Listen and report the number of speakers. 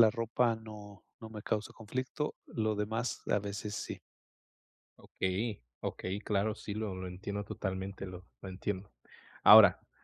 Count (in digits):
2